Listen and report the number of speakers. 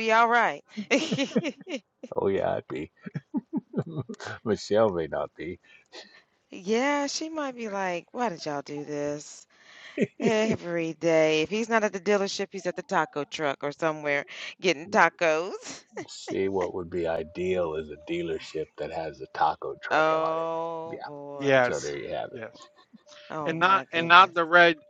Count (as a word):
three